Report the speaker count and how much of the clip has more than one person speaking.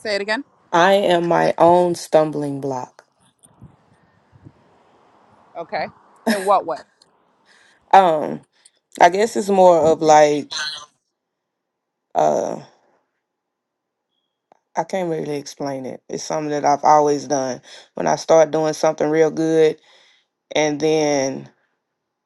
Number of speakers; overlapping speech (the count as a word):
two, no overlap